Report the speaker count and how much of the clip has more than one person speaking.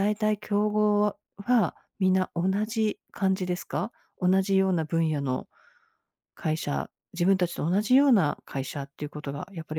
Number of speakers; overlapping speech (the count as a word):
one, no overlap